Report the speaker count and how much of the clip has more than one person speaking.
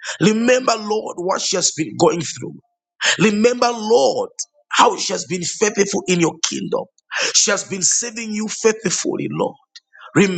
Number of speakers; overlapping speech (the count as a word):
one, no overlap